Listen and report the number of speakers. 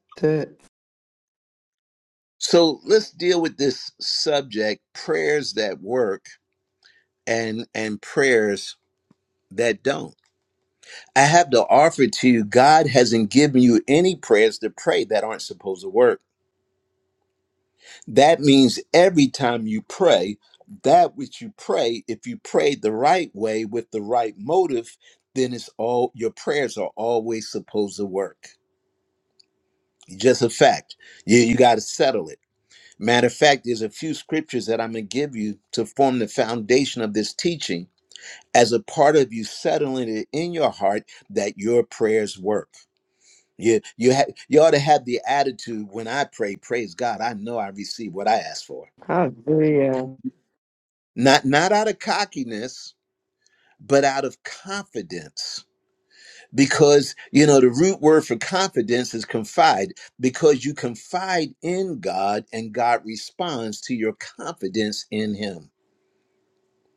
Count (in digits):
2